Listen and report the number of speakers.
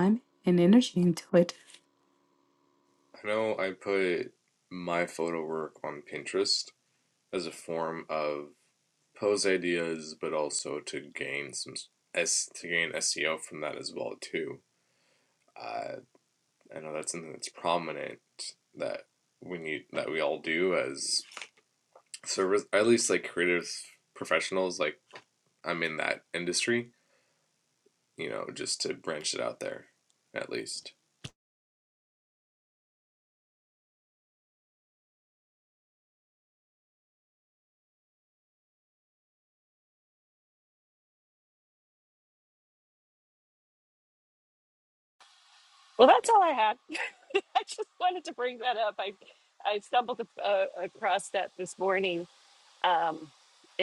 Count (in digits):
3